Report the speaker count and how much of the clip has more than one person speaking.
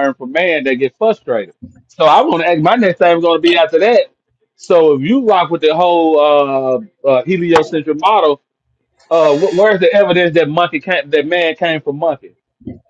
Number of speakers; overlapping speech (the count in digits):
1, no overlap